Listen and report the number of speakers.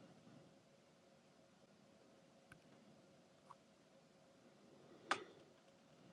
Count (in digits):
0